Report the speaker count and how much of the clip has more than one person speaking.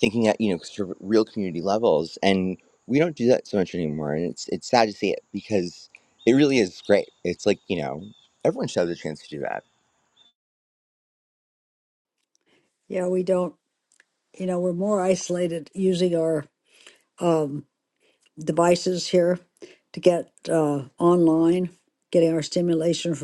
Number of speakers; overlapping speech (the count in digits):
2, no overlap